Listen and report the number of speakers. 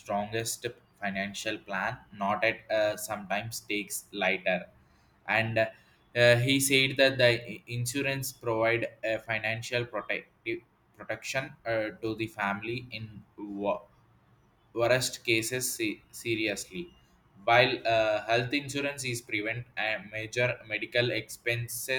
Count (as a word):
one